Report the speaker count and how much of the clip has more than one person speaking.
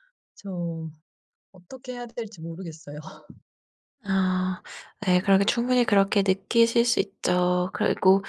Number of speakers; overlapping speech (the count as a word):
two, no overlap